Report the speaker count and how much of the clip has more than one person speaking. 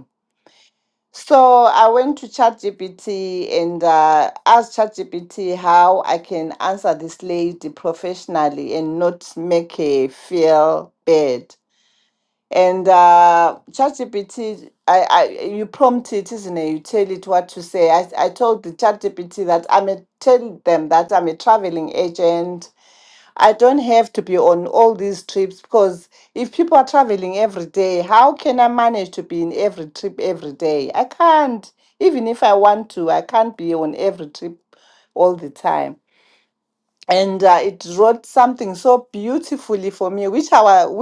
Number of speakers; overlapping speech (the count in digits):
1, no overlap